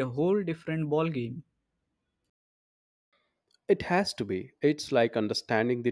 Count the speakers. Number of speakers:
two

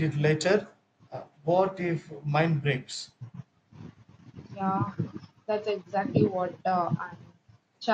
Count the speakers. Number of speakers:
two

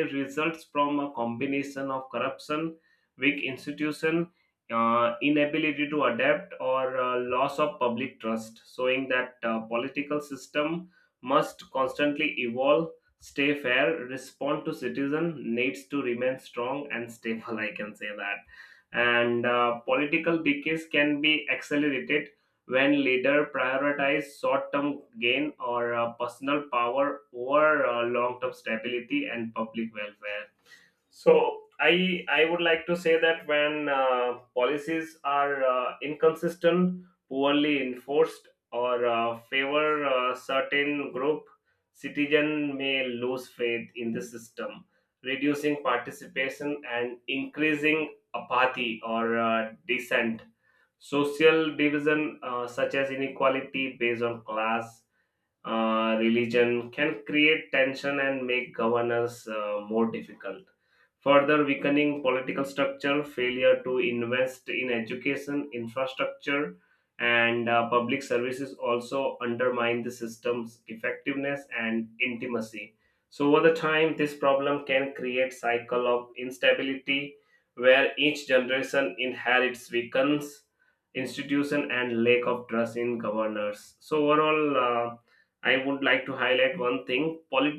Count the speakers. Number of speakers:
one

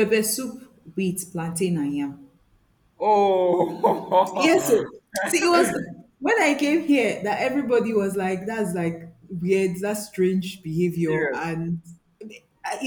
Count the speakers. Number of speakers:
two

